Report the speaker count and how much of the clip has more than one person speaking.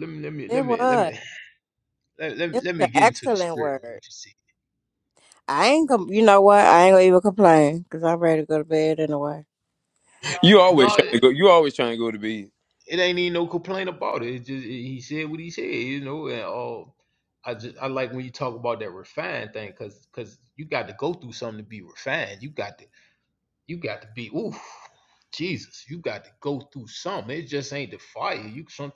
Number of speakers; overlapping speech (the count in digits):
3, about 9%